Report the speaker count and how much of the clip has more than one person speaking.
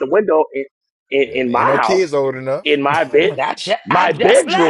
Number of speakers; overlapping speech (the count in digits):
3, about 35%